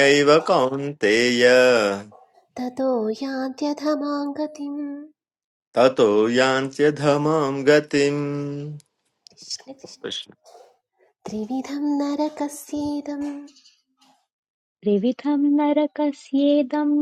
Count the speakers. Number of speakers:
three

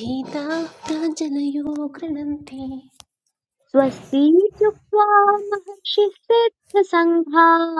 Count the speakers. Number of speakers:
two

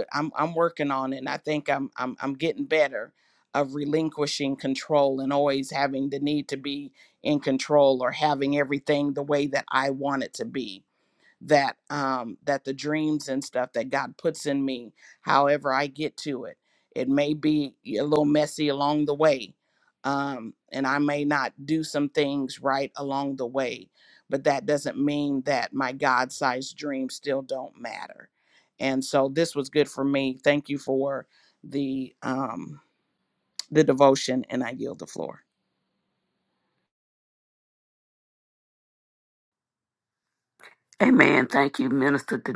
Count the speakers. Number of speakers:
two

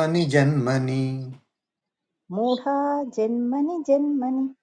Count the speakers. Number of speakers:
two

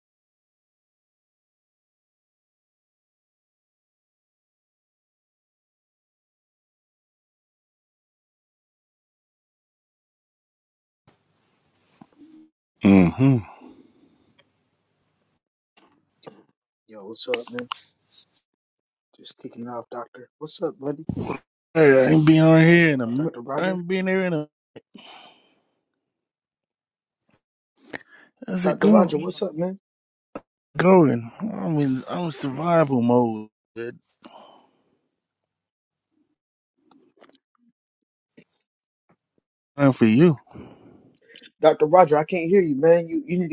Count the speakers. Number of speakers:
two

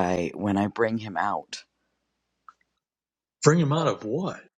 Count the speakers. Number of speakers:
two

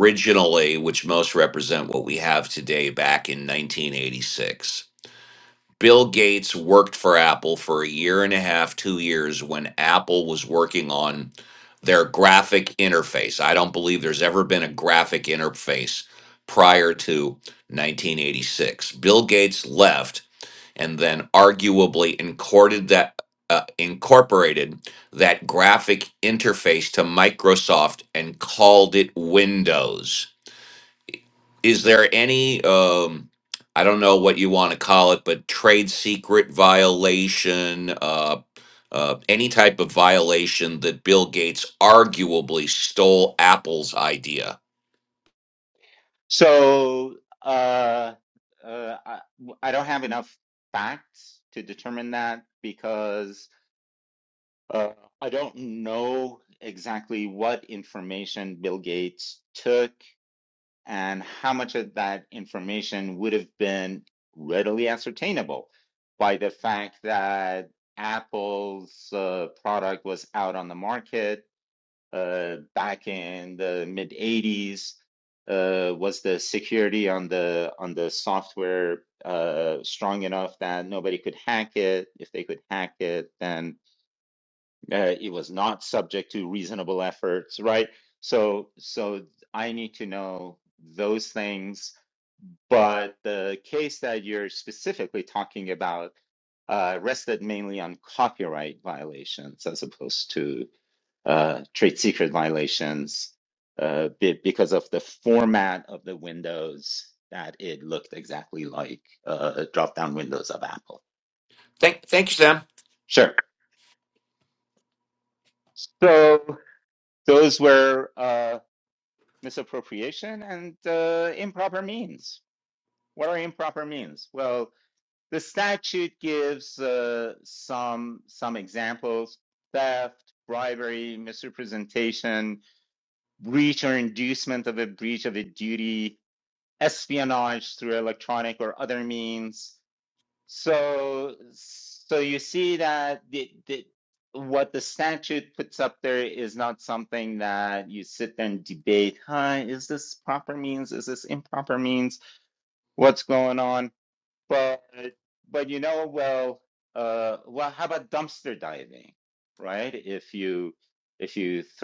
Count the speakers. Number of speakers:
two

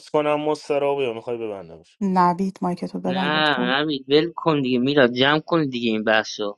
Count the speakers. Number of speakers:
three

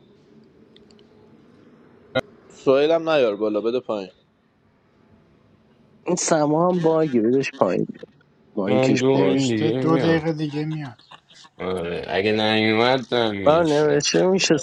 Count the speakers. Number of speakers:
four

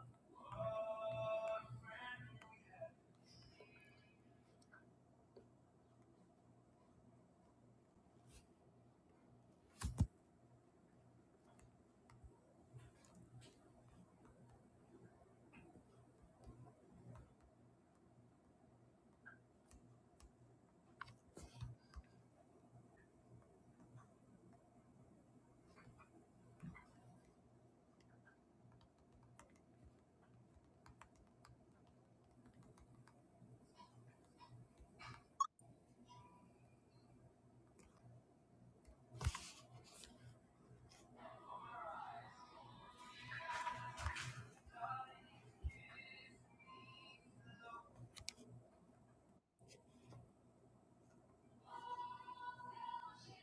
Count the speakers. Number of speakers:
zero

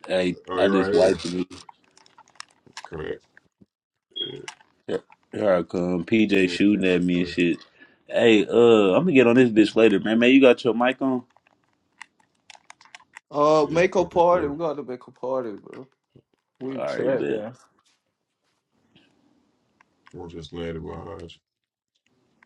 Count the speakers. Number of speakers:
three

